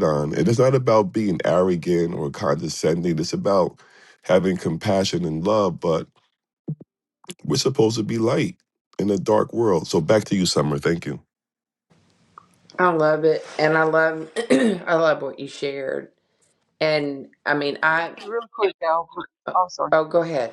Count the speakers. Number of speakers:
3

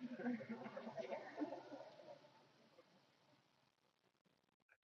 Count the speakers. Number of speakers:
0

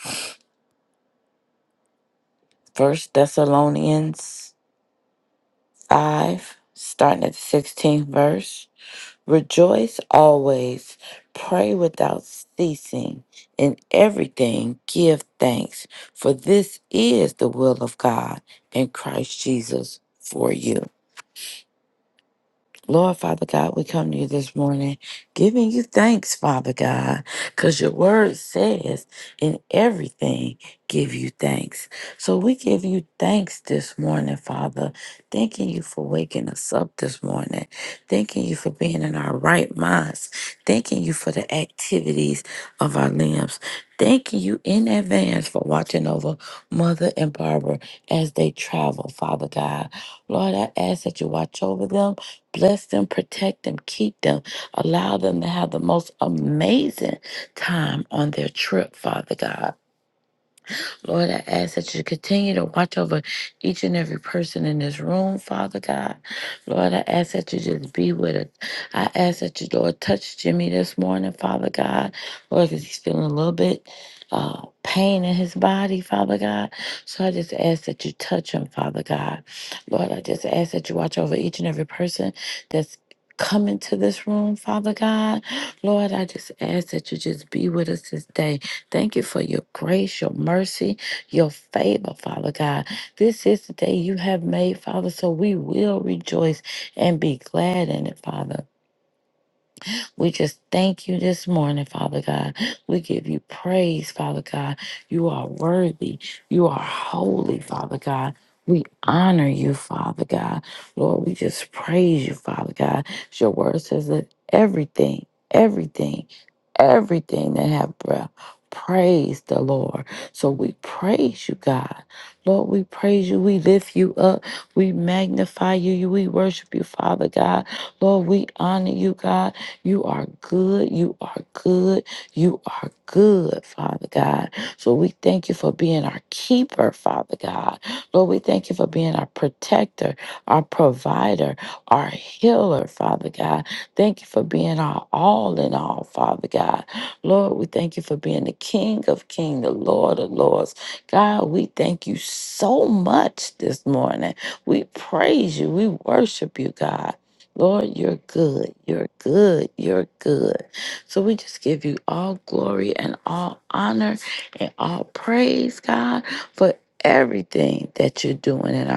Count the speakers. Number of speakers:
1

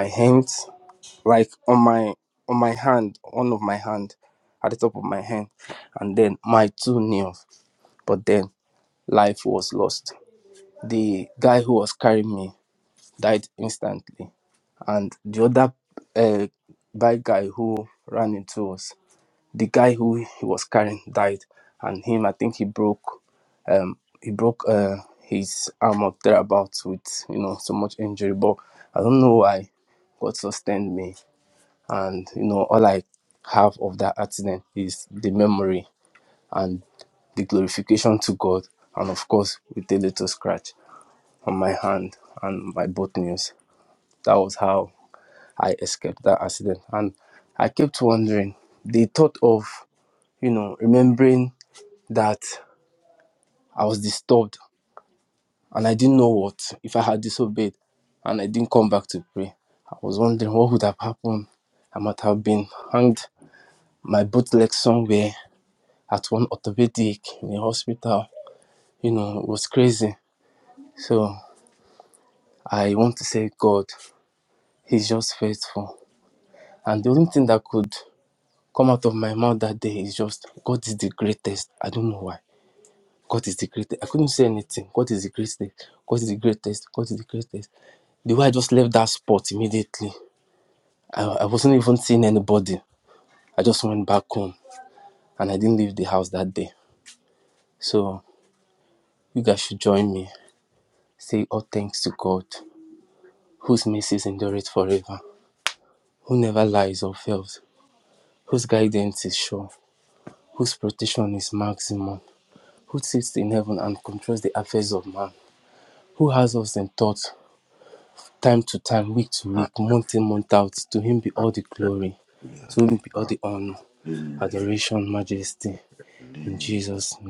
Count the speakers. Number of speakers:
2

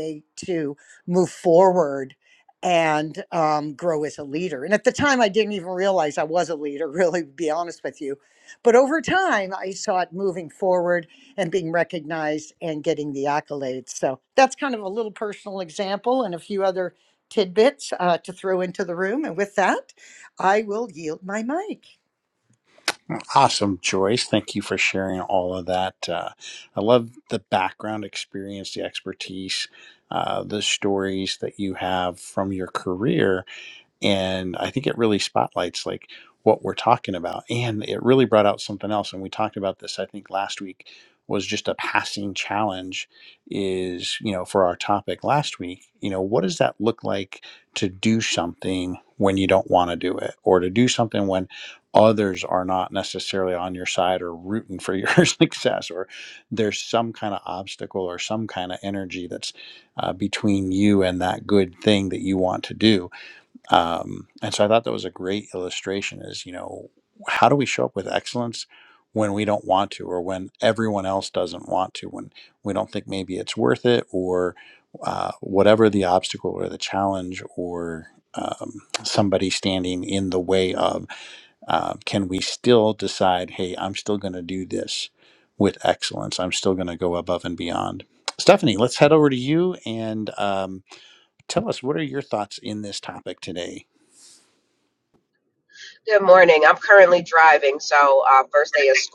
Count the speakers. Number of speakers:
3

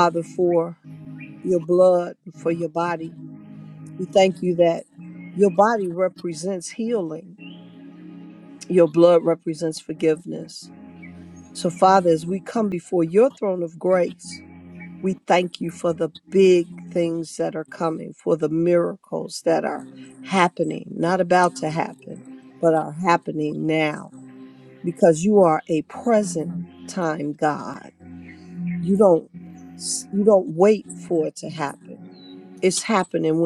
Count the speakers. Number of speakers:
1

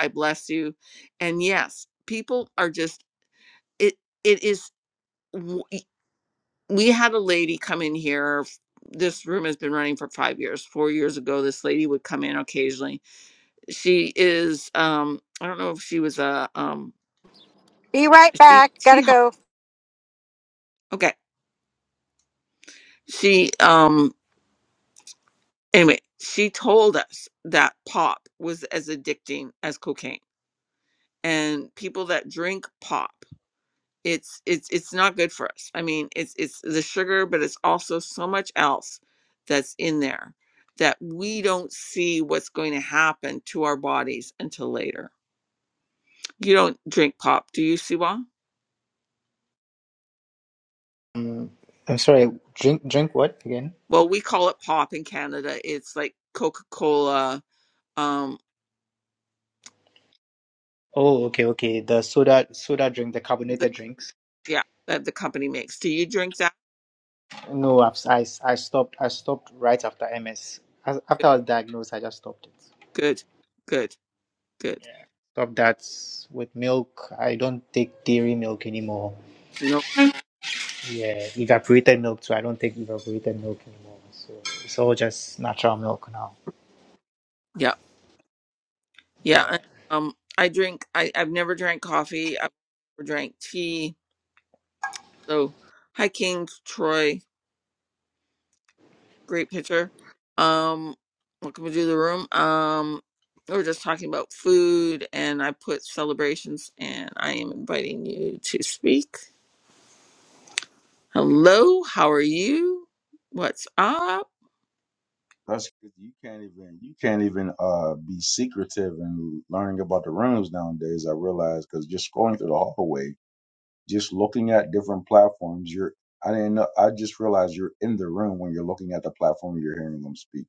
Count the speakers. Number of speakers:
4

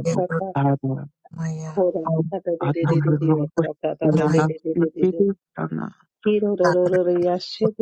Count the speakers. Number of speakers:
3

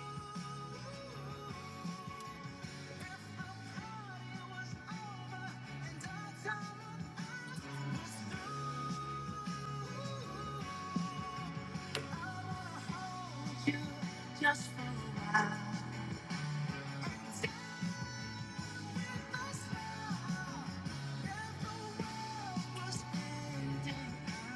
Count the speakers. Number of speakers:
0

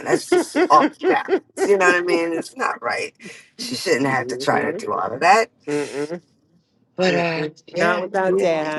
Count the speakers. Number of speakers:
2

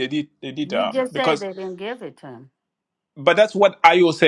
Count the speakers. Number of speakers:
2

